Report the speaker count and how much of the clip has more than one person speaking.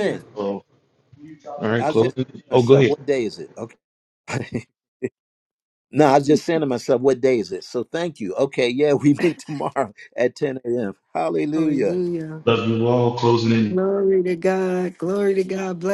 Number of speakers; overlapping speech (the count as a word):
three, about 9%